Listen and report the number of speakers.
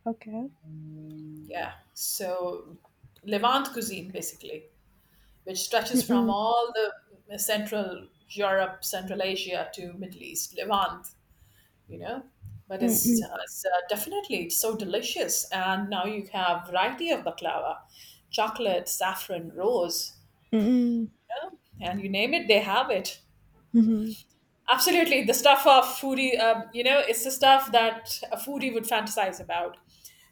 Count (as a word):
two